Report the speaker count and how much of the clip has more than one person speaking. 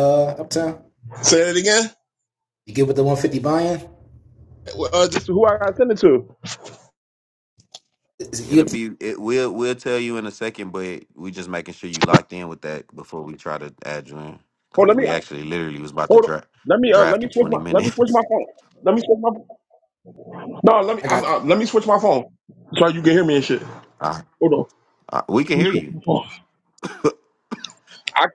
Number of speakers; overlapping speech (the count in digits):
3, about 9%